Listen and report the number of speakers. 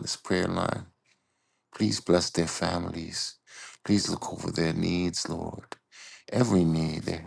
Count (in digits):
1